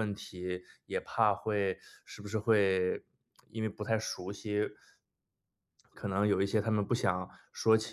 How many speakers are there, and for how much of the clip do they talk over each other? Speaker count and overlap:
1, no overlap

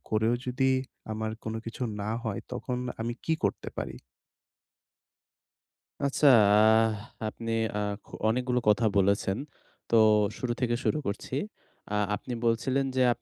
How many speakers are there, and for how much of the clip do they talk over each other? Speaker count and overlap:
2, no overlap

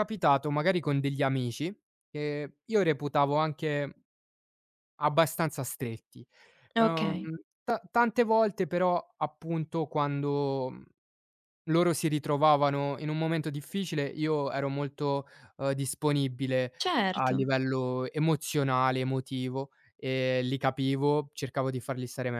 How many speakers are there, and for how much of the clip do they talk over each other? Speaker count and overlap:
2, about 3%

